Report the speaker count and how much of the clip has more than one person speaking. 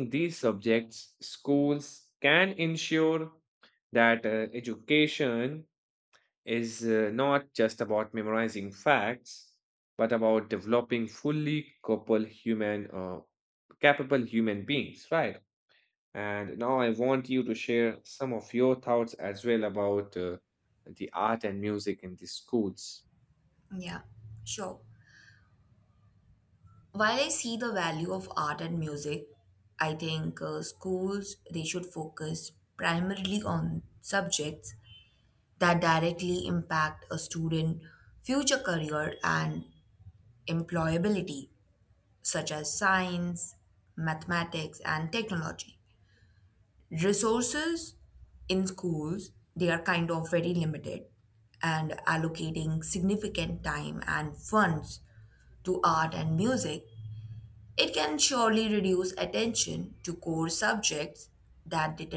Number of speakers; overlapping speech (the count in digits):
2, no overlap